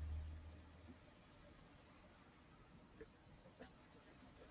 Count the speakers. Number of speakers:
0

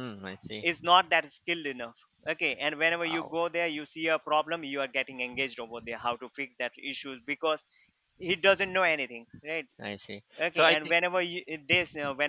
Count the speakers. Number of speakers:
2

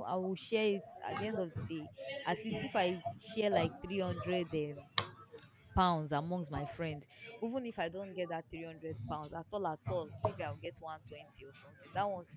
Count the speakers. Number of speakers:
1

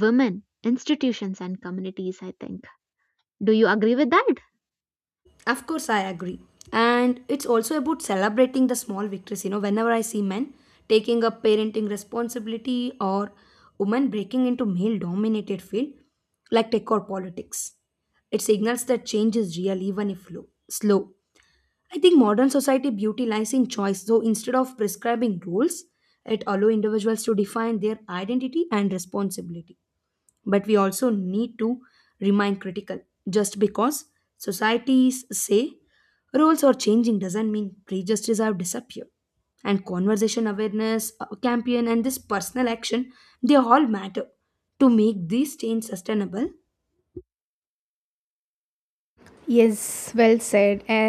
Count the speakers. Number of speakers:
3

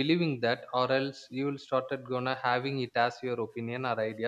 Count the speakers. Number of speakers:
1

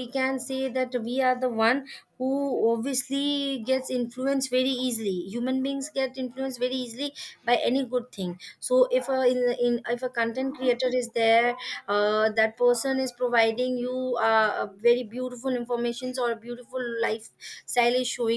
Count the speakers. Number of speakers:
1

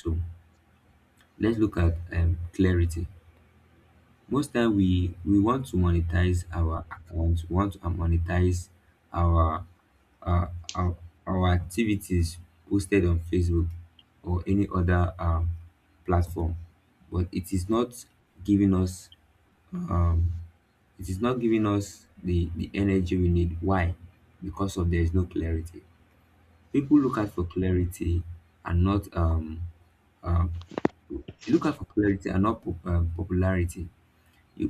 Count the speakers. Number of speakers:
1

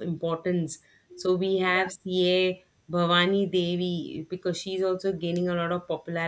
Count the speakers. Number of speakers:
1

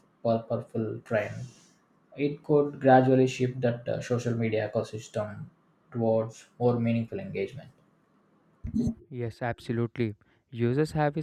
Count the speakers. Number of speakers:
2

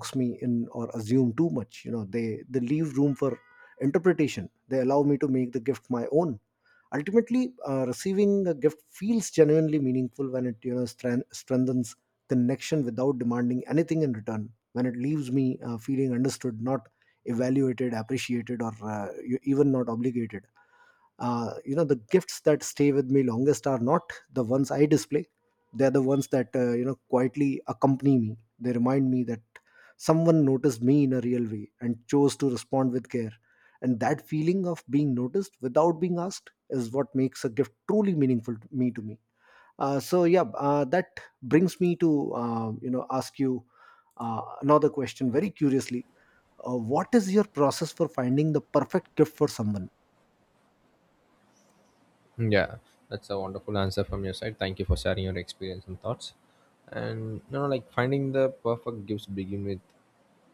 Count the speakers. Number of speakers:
2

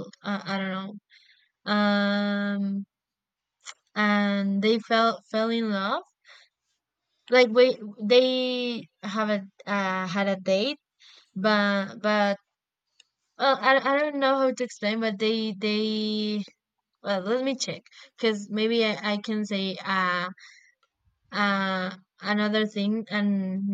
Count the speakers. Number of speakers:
1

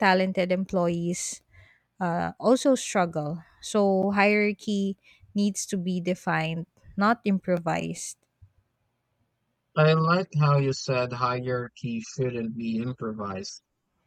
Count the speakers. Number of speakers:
2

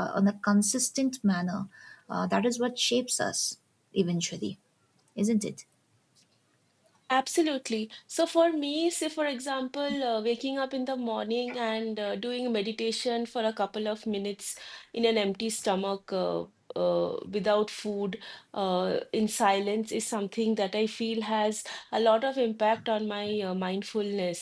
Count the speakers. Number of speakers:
2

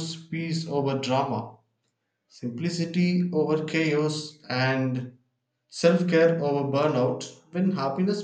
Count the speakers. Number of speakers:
1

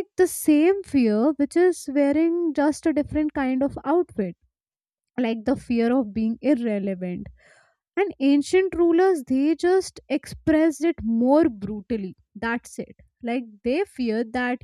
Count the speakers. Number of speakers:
1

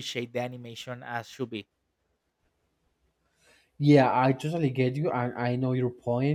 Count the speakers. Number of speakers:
2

